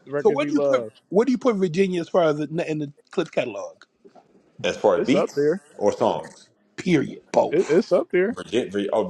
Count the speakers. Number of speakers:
3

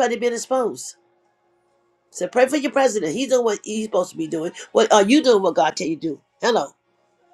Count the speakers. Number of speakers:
1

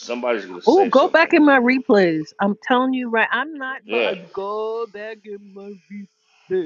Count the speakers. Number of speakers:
2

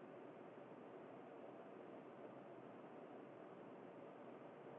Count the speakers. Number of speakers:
0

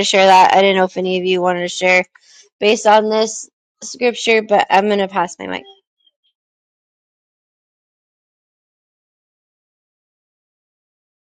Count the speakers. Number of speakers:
1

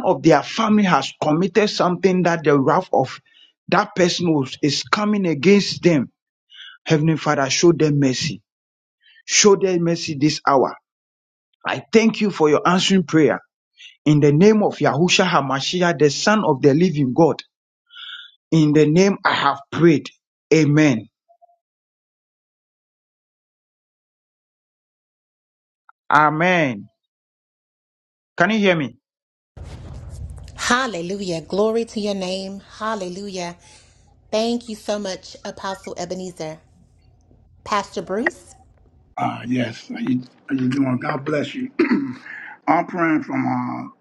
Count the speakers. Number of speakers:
3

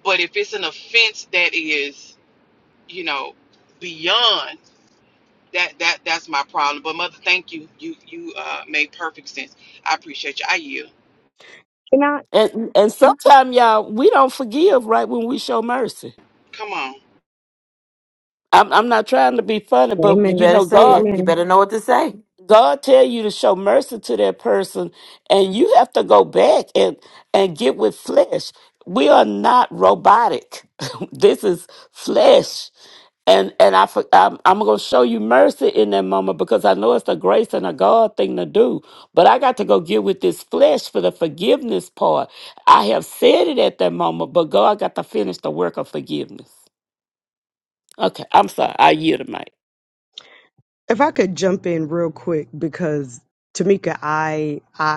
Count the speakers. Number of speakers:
4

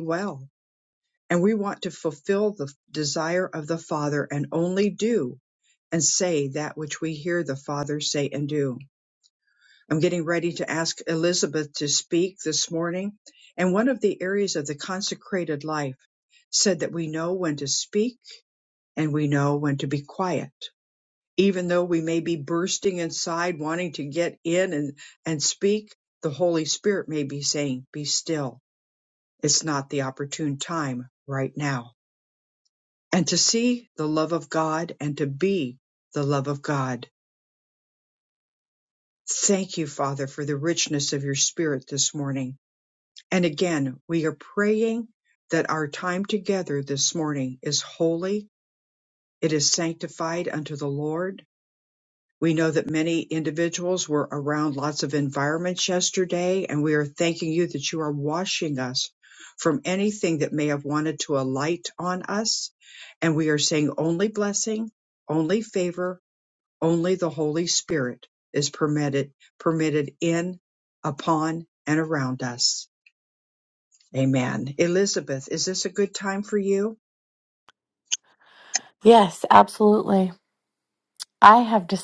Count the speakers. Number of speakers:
2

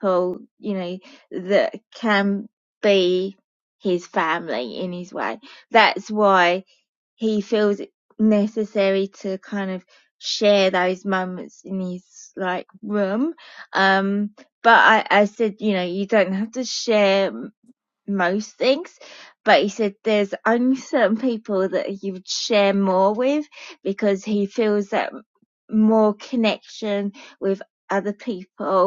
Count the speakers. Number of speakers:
1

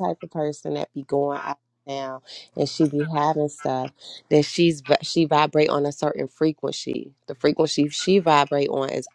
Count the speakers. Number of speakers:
1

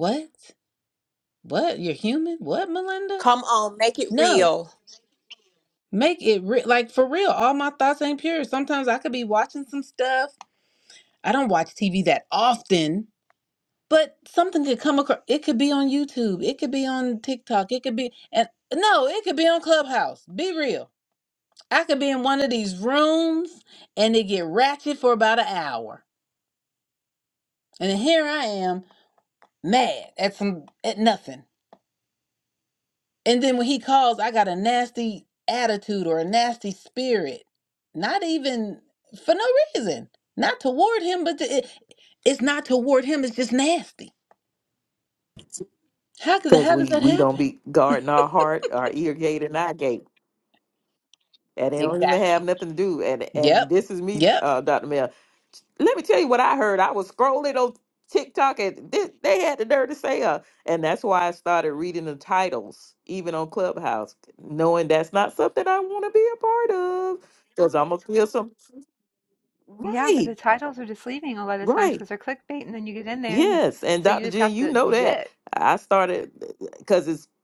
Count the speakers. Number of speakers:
4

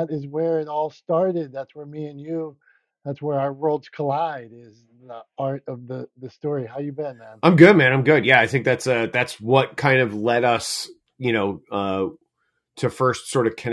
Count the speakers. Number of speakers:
2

